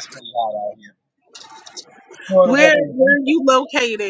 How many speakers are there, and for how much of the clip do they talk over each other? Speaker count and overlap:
two, about 22%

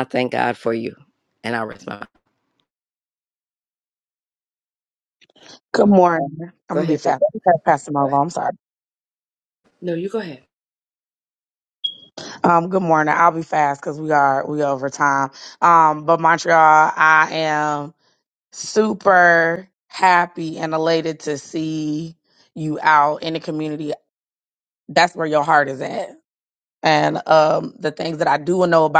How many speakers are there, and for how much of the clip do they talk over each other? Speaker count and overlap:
three, about 3%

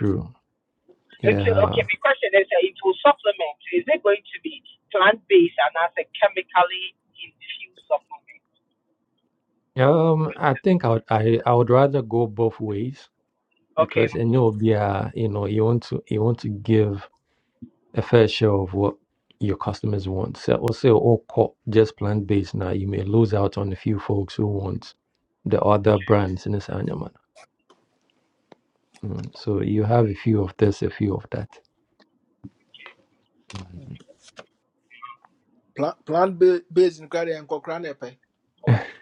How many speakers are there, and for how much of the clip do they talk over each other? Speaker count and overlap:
three, about 2%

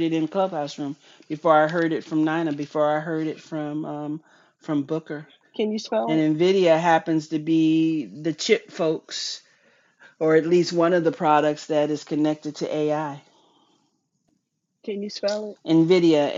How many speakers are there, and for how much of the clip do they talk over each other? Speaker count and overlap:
two, about 1%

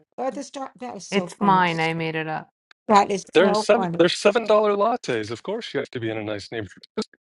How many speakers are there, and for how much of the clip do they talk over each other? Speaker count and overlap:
three, about 17%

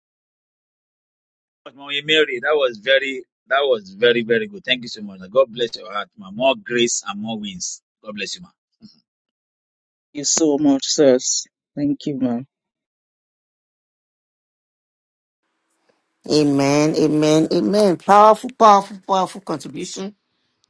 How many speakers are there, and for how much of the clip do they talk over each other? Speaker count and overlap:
three, no overlap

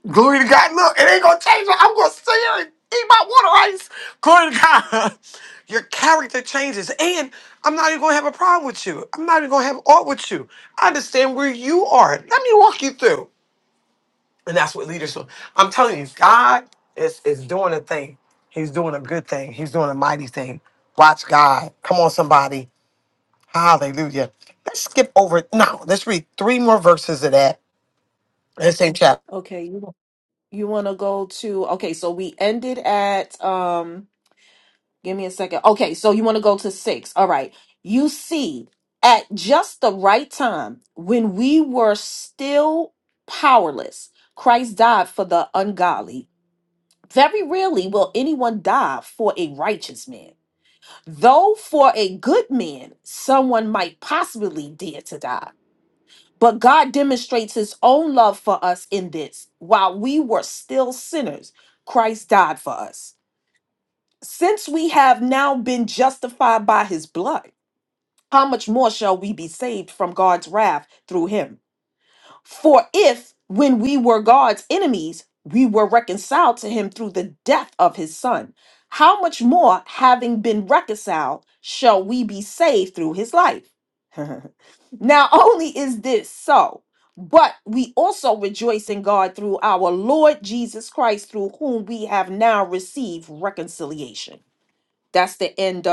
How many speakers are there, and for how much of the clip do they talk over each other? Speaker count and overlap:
two, no overlap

